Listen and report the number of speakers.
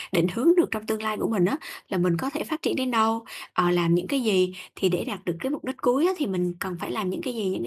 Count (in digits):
1